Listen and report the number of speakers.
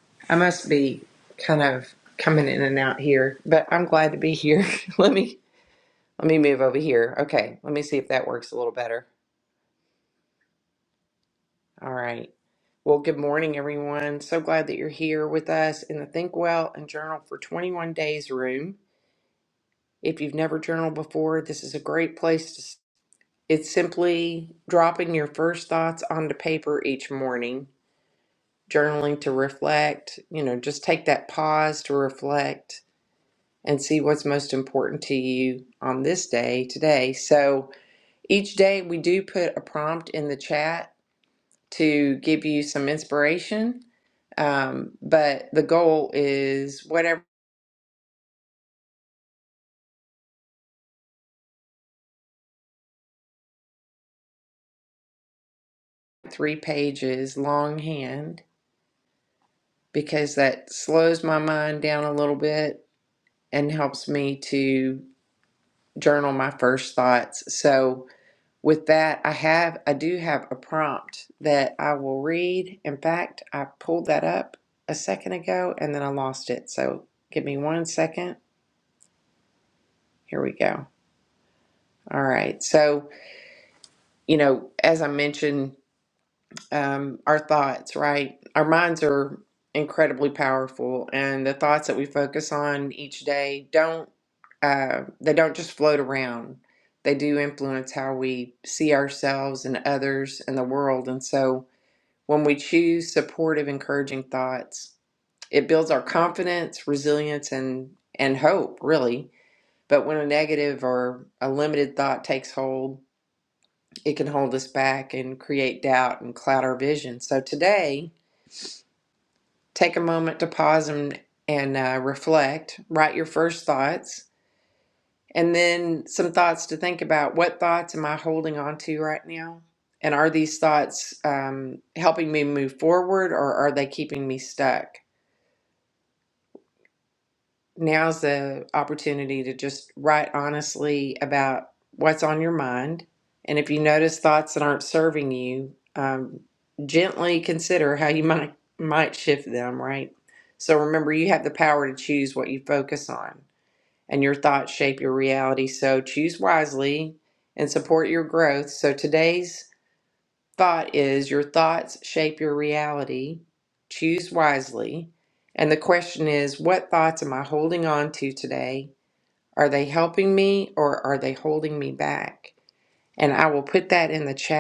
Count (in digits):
1